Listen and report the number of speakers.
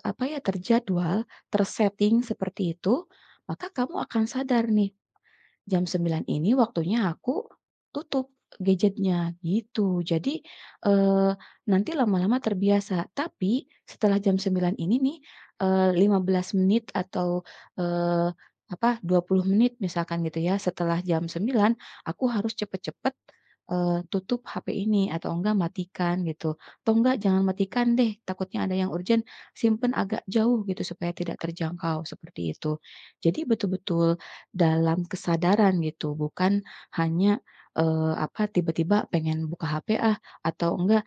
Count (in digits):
1